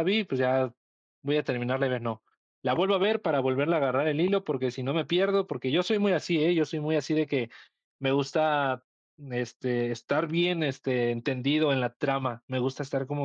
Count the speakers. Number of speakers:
1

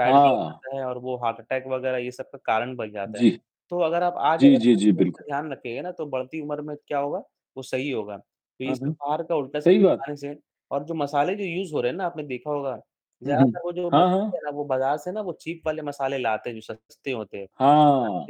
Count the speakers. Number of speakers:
2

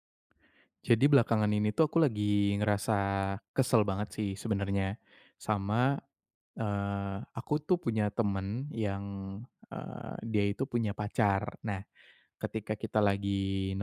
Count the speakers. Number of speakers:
1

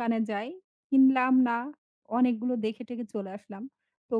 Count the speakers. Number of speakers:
1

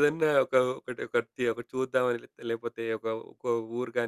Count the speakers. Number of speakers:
1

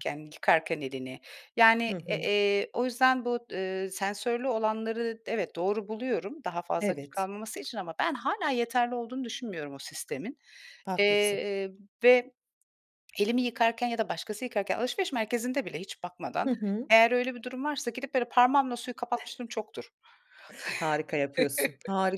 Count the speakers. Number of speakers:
2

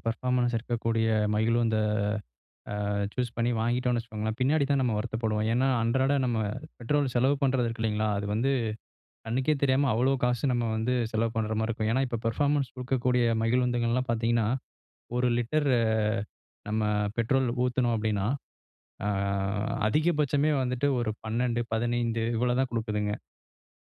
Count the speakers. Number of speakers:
1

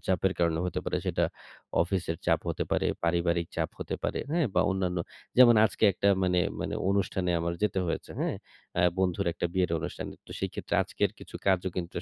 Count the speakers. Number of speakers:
1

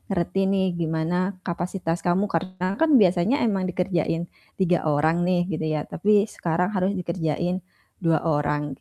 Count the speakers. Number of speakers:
1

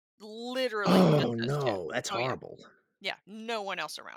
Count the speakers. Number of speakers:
2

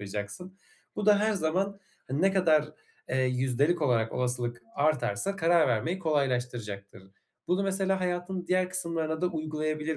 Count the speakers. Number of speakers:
1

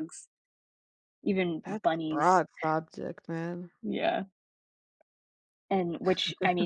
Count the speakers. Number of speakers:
2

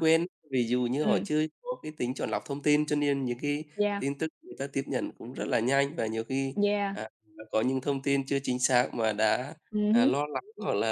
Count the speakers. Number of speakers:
2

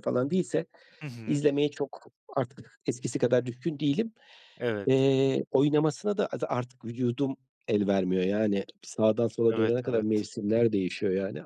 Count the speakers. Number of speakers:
2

